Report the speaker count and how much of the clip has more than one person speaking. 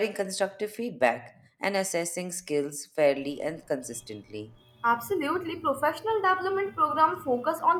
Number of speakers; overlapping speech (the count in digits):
2, no overlap